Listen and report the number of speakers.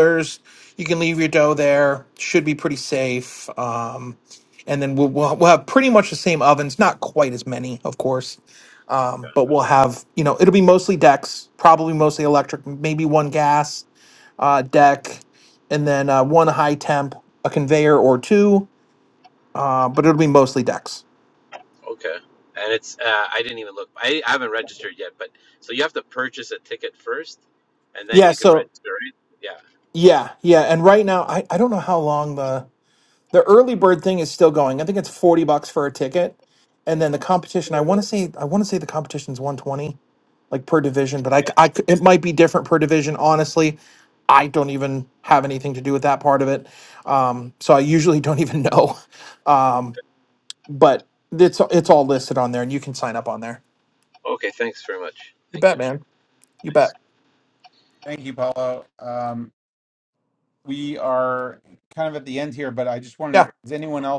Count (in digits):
3